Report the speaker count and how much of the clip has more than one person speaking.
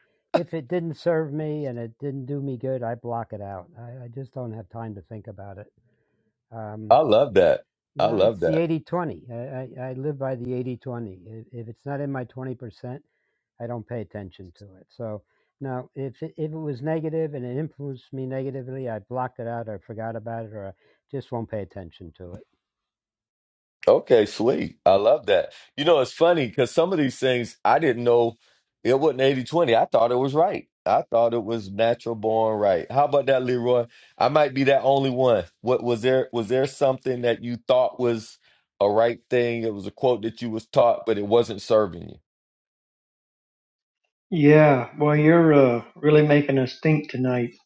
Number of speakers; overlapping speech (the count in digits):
3, about 1%